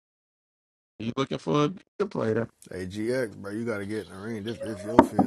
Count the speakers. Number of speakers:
two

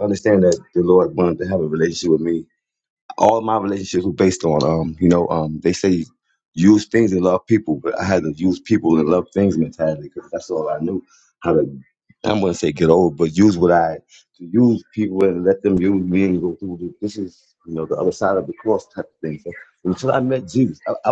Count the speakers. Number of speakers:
one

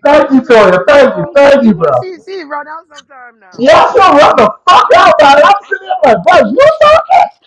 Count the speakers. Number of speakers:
two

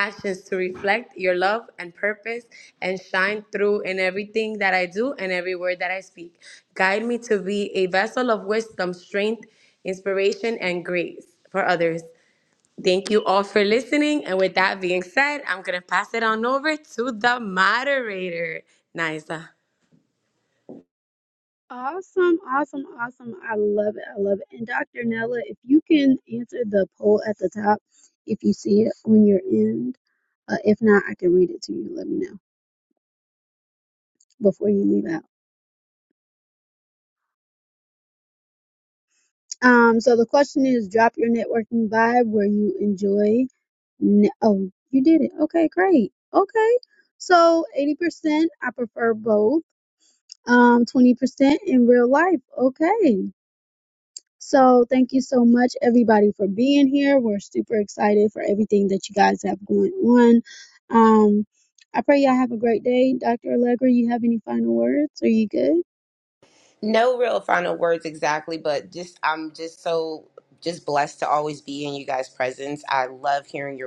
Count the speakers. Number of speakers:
three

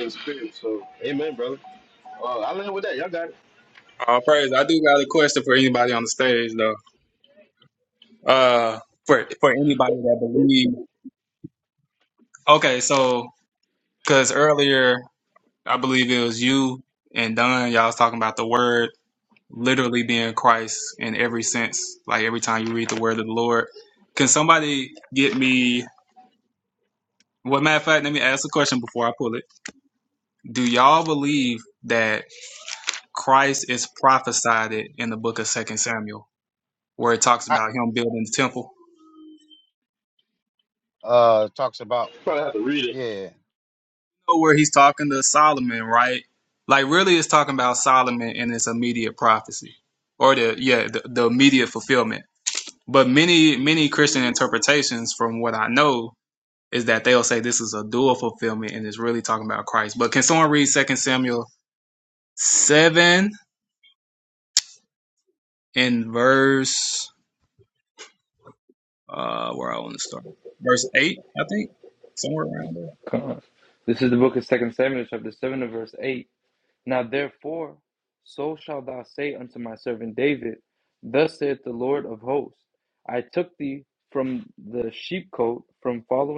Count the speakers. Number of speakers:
four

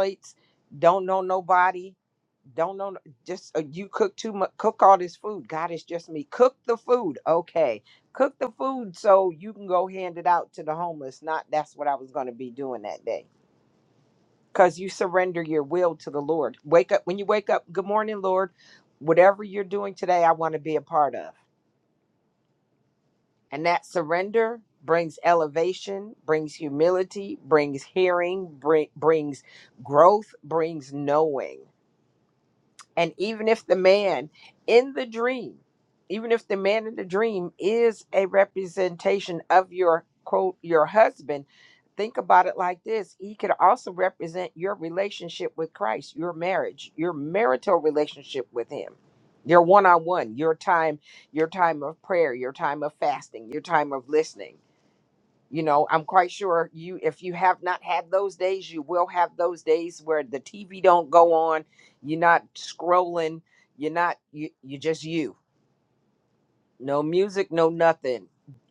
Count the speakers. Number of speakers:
one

